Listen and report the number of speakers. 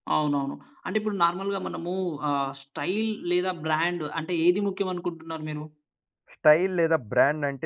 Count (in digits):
2